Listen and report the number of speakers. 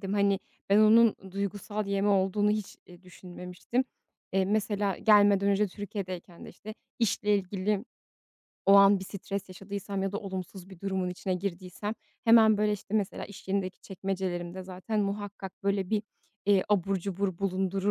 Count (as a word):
one